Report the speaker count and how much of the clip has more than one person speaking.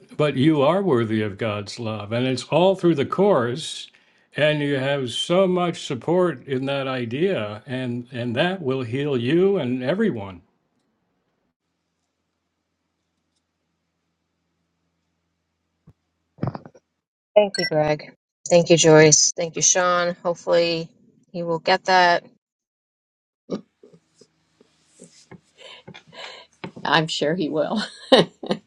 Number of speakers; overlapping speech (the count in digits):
3, no overlap